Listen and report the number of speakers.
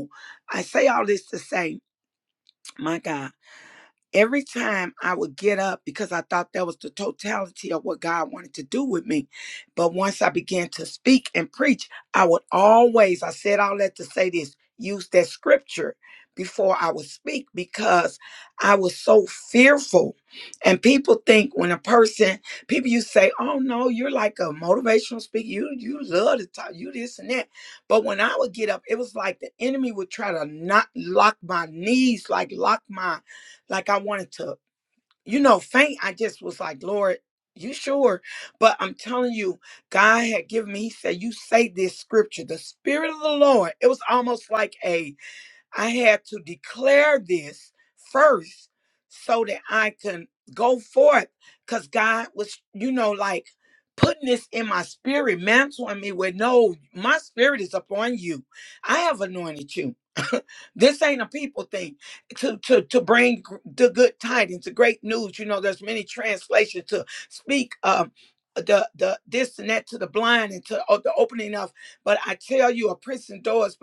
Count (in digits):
1